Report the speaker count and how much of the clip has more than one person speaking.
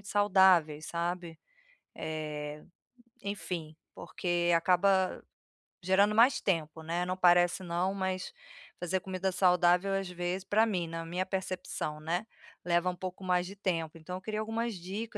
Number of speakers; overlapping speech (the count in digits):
1, no overlap